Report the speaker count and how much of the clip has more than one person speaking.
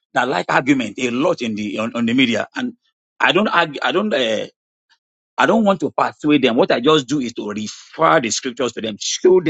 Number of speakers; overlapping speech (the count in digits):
1, no overlap